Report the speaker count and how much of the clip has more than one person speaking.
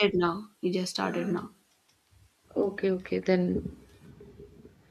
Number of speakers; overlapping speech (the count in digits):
2, no overlap